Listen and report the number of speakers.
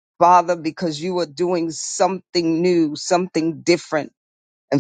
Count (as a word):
one